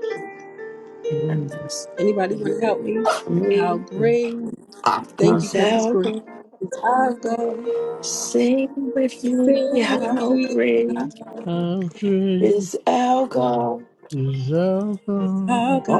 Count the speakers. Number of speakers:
three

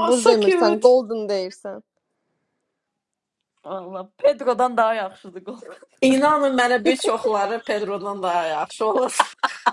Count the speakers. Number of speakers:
three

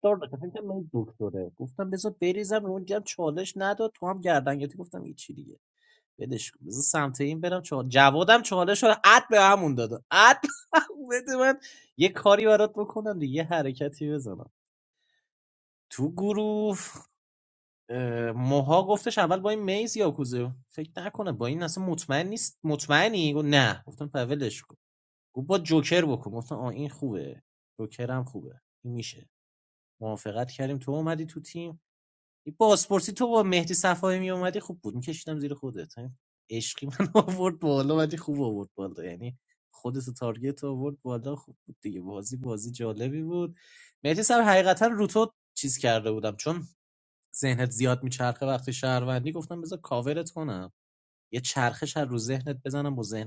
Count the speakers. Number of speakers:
one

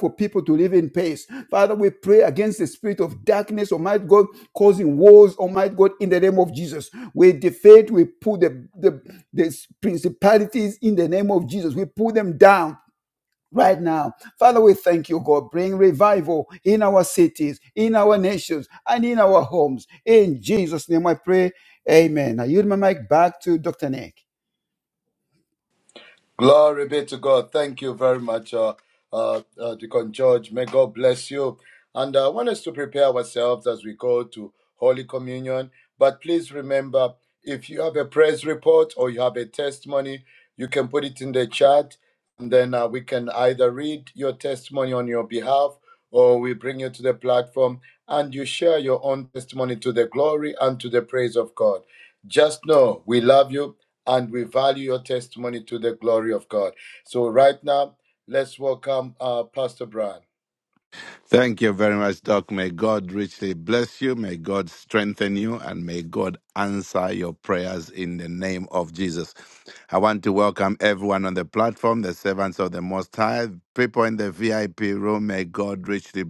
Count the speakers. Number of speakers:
three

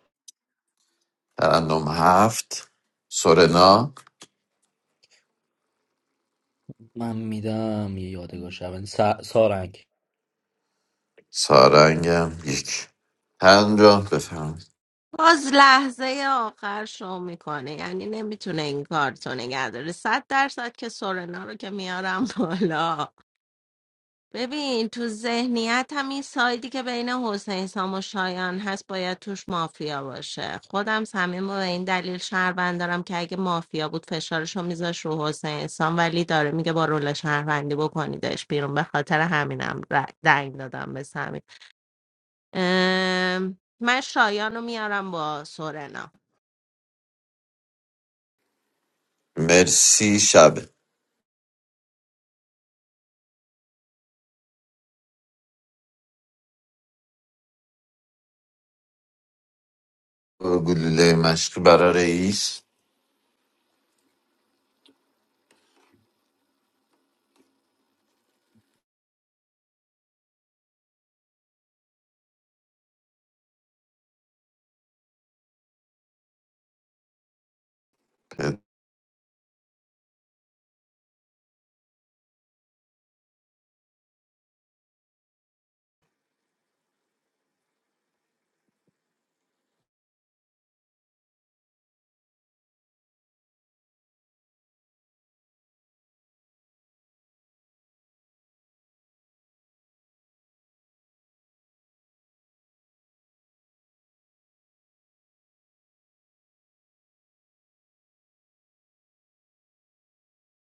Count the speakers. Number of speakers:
three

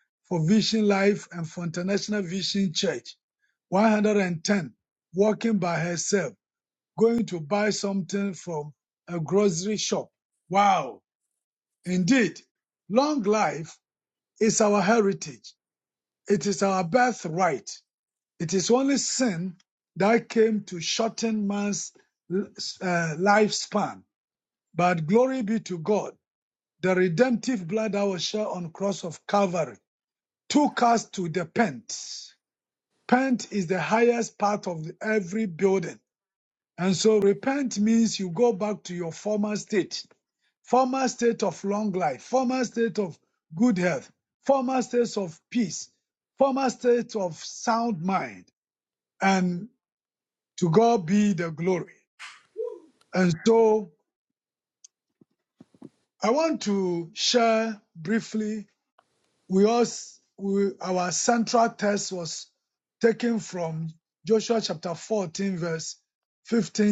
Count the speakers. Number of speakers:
one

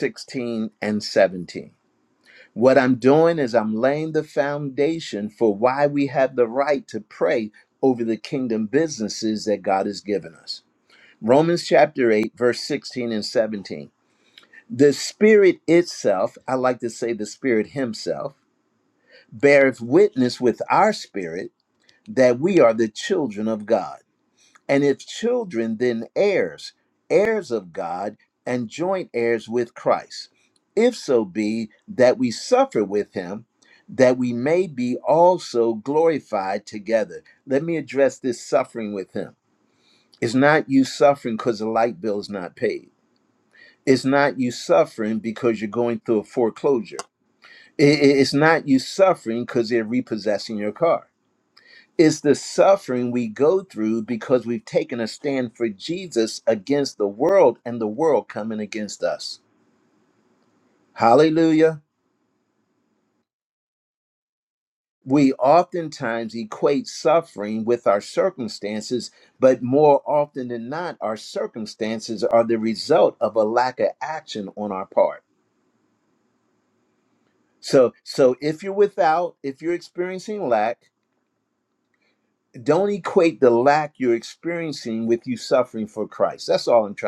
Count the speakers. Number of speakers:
one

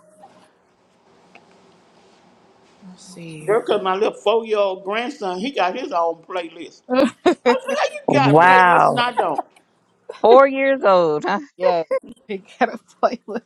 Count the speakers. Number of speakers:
three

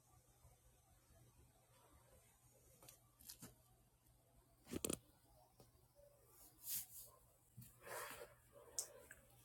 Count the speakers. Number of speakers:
zero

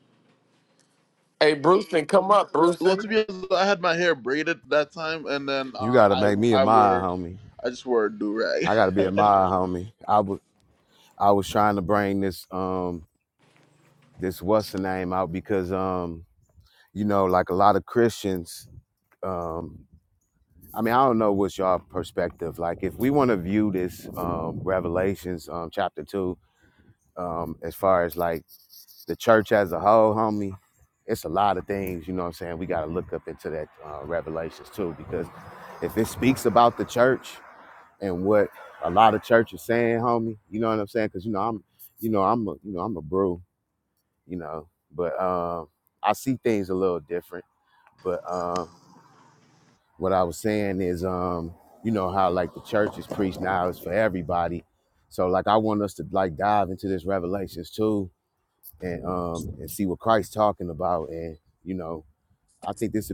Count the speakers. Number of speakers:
three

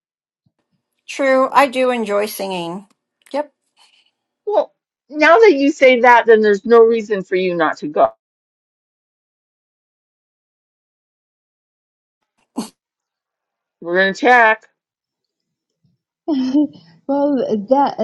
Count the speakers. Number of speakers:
three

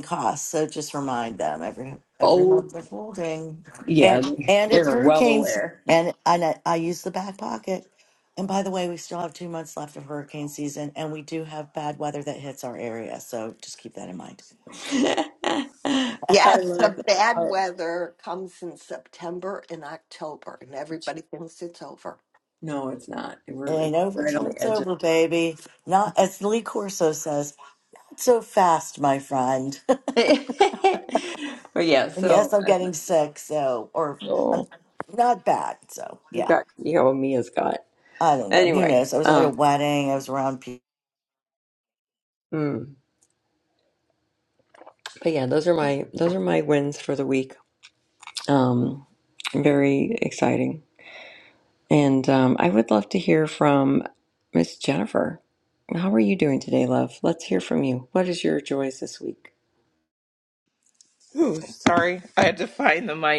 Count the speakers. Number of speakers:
four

